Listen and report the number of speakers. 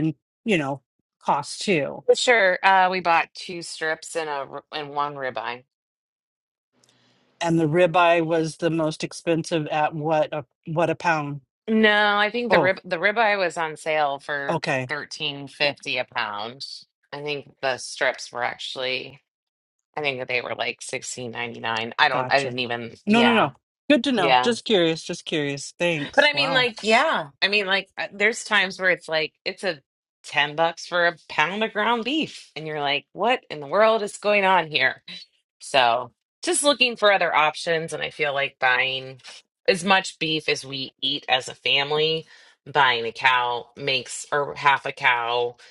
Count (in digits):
2